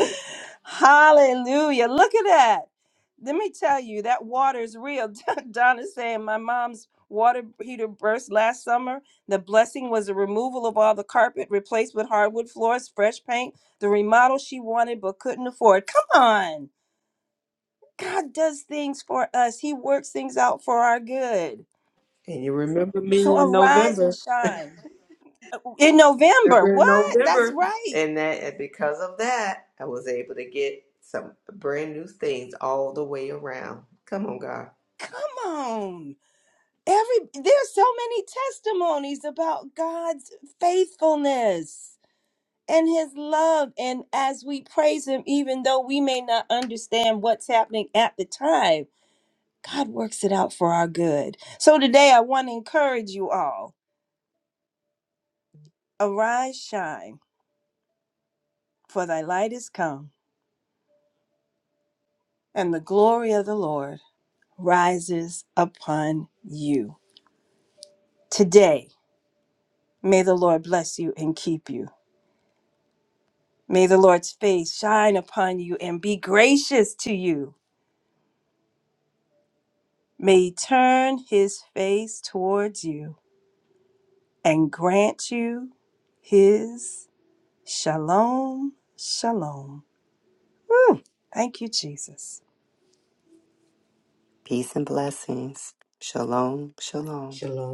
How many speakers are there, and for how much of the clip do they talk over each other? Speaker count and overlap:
3, about 2%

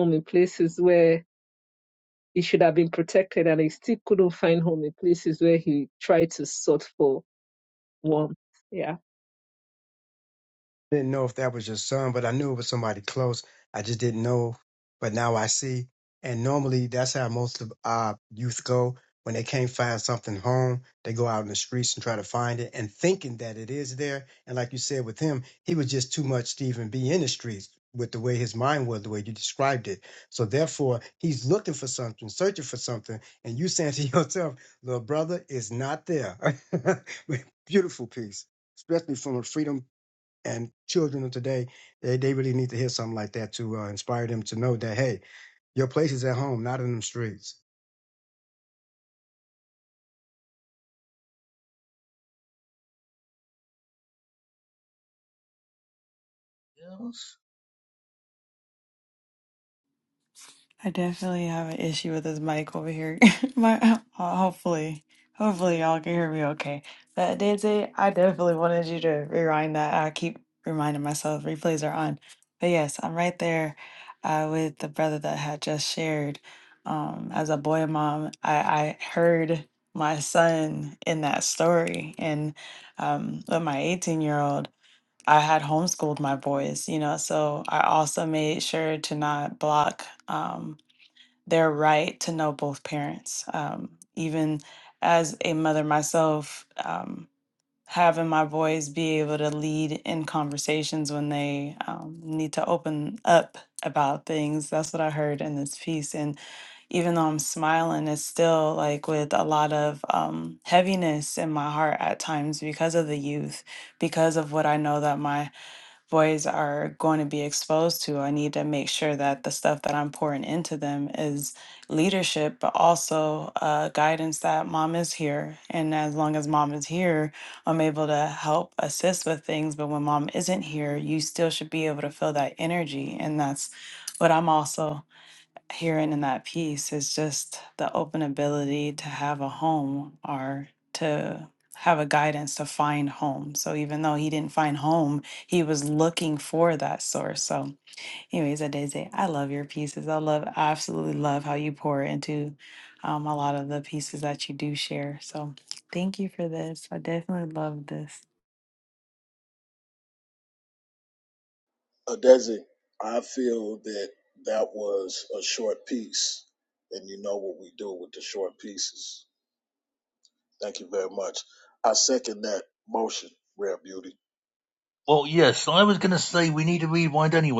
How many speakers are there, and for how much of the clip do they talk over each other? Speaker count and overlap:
5, no overlap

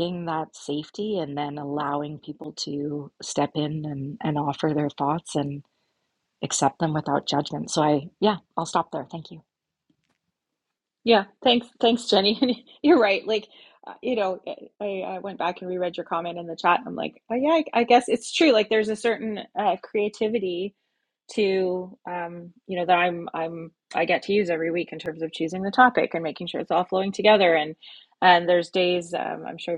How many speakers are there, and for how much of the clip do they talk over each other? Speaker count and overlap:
2, no overlap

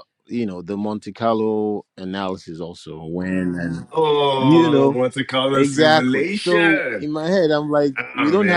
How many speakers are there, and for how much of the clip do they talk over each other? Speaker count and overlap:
2, about 27%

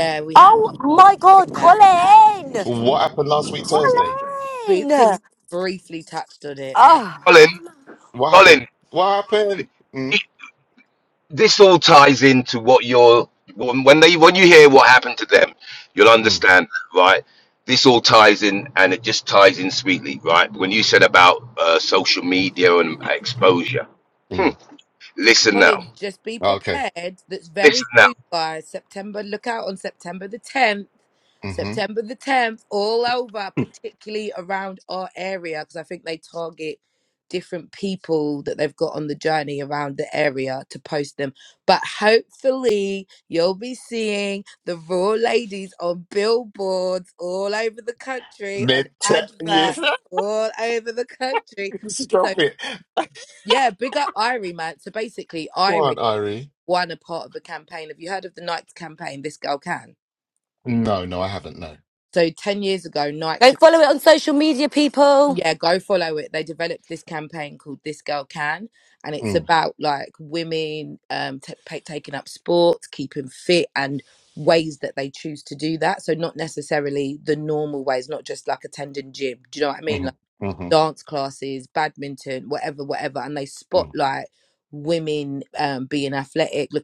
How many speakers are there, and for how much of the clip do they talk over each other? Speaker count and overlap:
4, about 6%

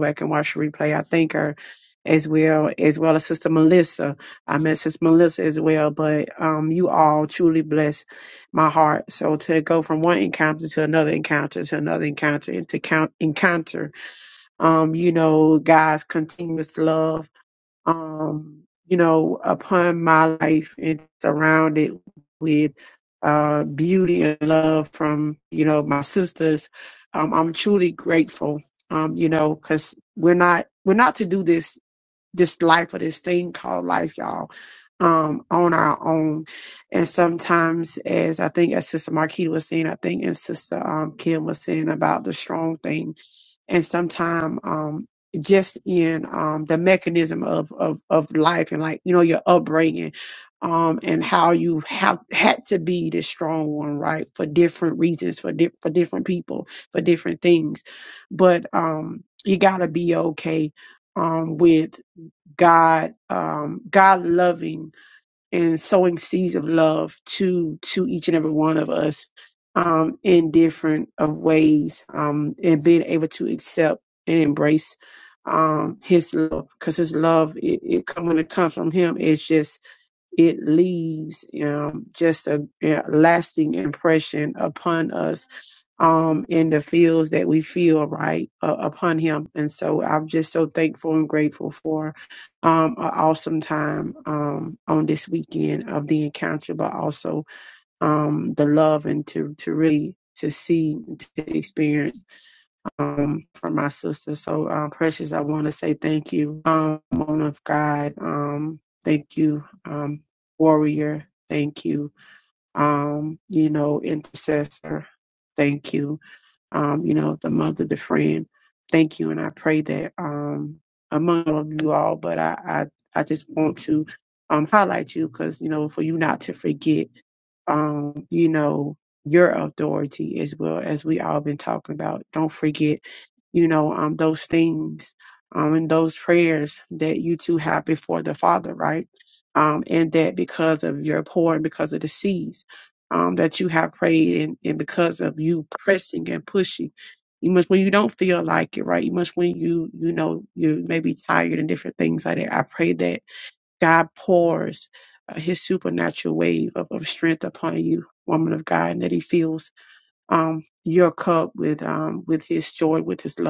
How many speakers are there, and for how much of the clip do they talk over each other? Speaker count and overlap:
1, no overlap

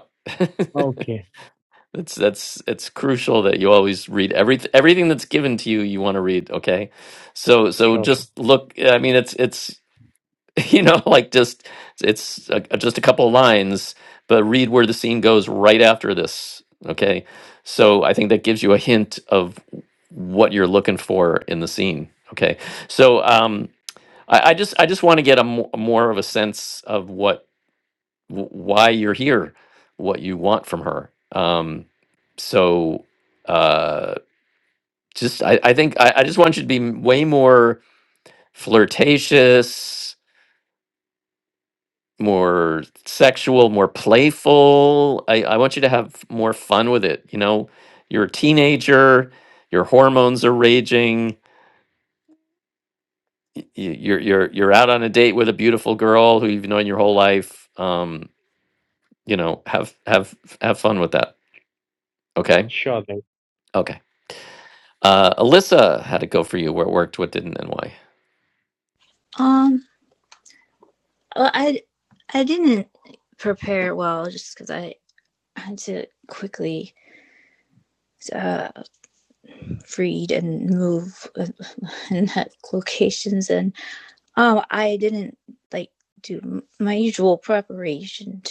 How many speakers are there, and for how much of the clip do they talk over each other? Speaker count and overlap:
3, under 1%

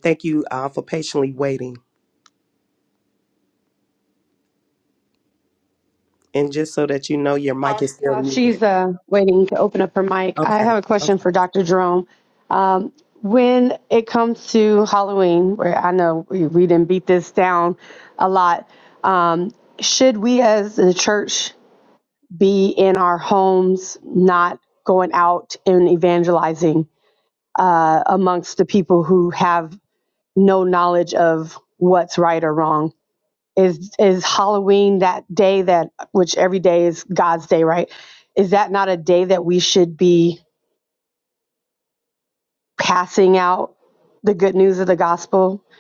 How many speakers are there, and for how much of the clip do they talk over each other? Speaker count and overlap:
2, about 3%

